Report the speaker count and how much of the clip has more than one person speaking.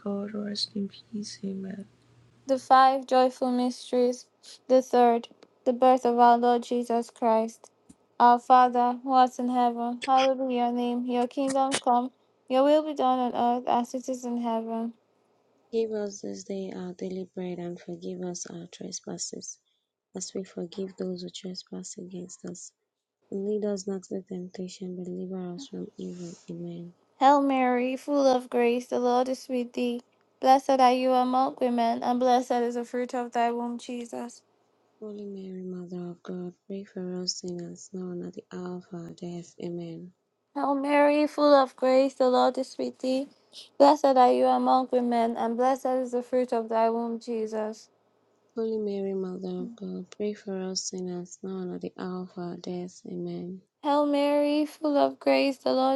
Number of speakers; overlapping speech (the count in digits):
3, no overlap